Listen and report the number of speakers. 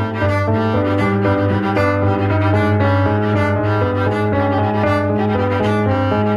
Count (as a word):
zero